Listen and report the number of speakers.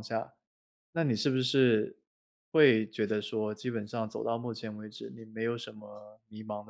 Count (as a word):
one